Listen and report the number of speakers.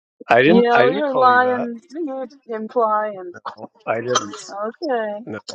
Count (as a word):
two